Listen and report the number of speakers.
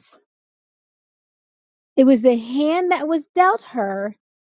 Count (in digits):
1